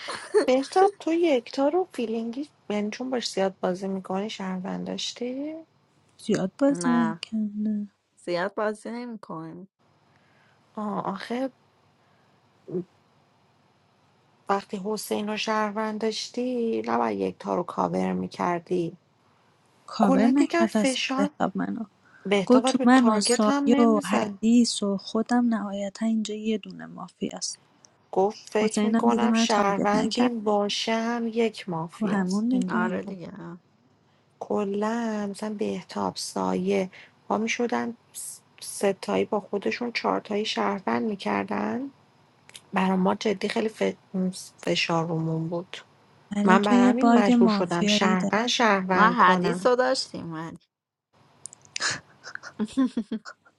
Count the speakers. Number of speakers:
3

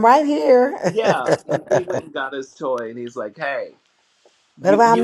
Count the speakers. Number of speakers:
2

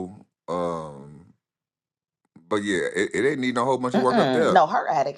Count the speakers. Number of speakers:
2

